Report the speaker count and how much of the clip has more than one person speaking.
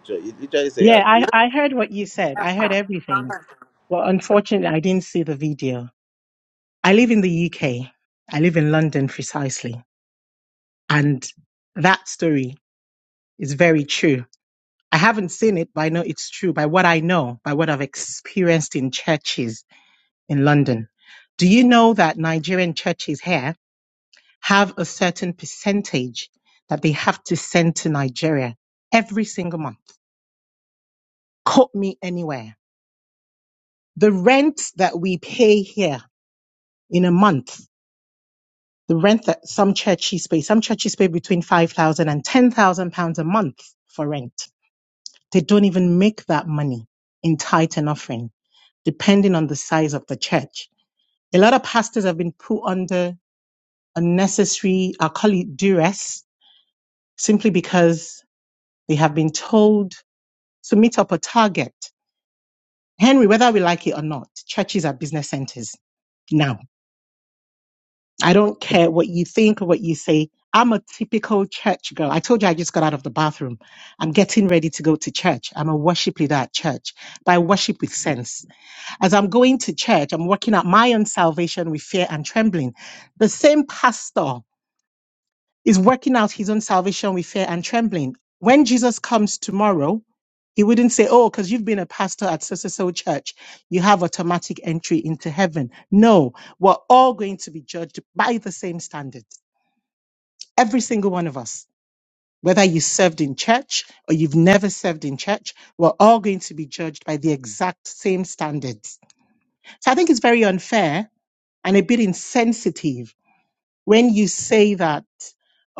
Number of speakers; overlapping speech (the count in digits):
2, under 1%